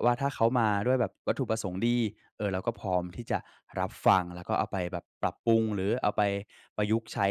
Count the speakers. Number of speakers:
one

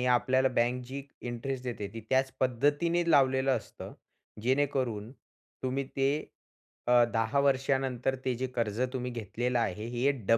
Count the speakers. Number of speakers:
one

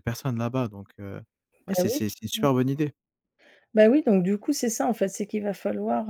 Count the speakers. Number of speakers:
two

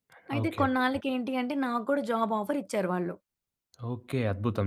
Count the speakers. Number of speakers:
two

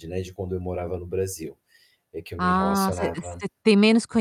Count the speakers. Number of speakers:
two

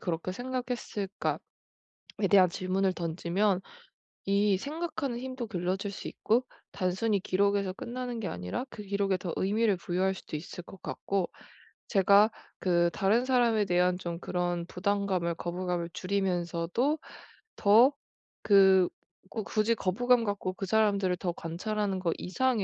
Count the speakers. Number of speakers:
one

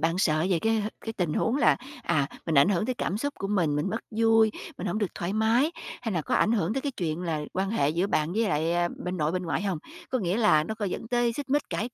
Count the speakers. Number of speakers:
one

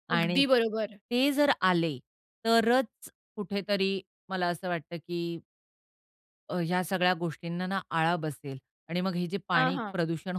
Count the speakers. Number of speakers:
two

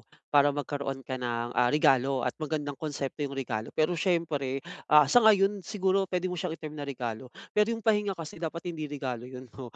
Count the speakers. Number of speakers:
one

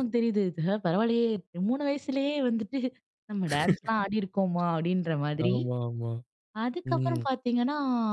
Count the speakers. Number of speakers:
two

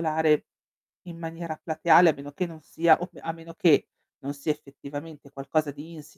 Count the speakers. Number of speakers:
one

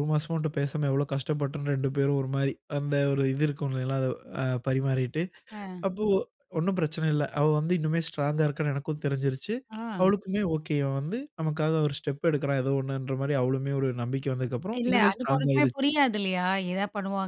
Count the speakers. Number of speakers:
two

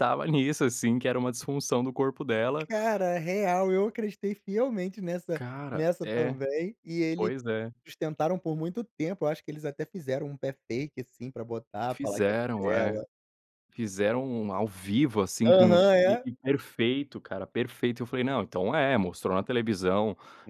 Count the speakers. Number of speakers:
two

